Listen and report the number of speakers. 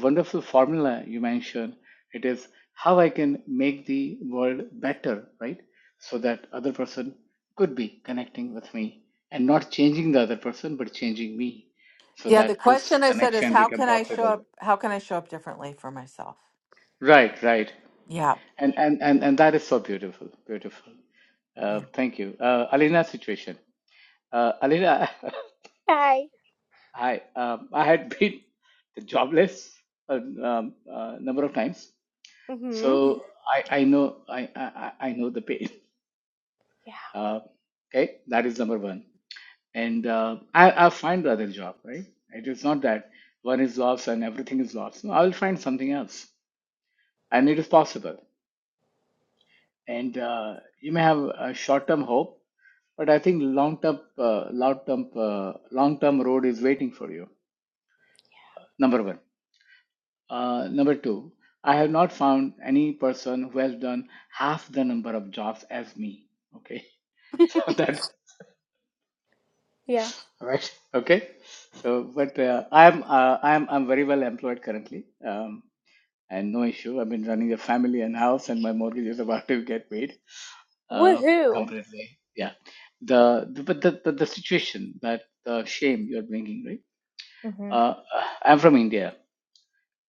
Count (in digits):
3